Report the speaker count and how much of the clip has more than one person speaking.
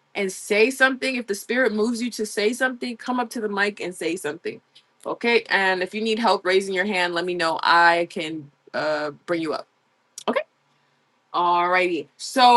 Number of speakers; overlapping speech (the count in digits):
1, no overlap